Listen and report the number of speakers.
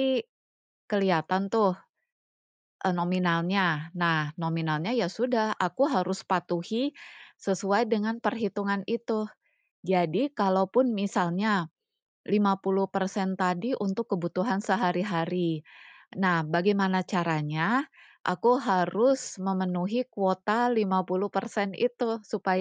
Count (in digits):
1